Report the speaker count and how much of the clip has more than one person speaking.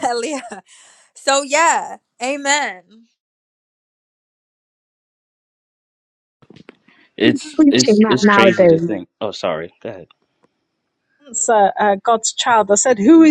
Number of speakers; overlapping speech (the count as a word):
three, about 13%